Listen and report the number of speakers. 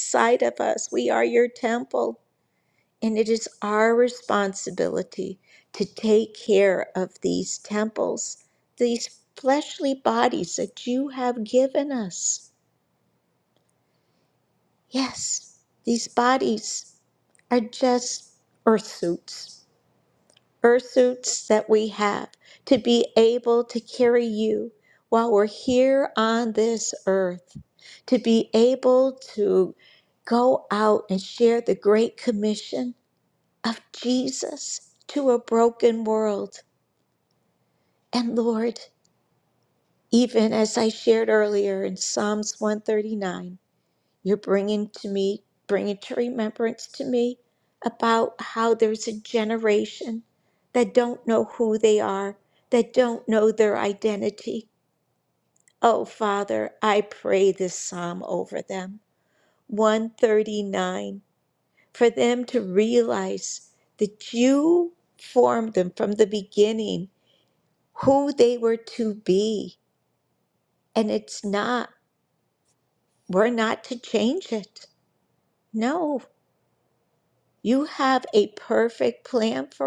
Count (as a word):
one